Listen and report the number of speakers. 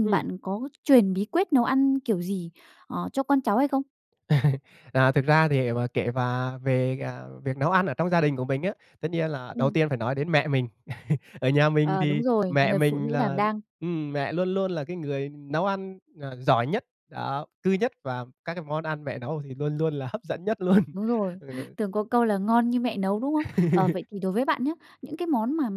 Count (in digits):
2